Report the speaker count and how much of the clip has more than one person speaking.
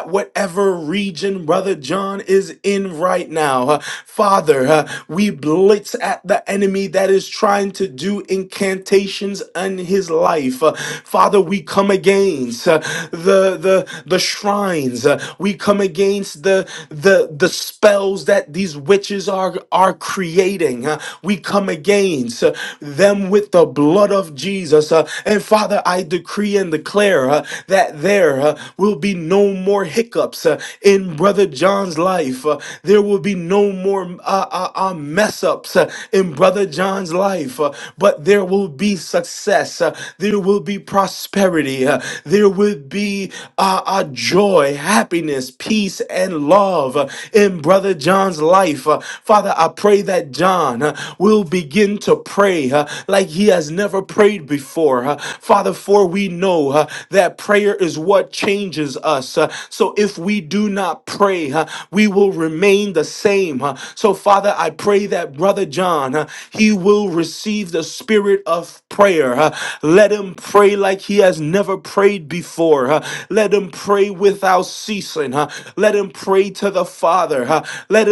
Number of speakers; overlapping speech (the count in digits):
1, no overlap